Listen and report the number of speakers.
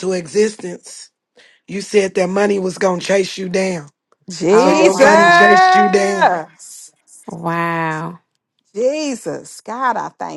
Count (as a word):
three